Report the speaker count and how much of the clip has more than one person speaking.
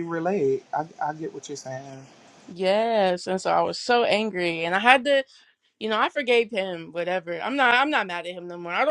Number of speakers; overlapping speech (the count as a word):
two, no overlap